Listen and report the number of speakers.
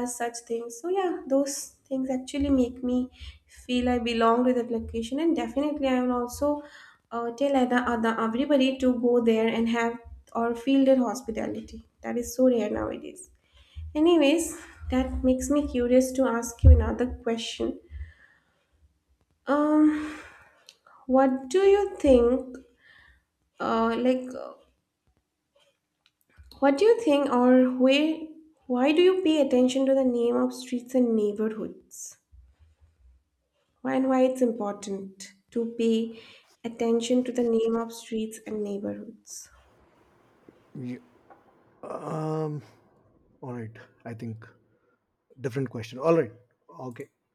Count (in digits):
2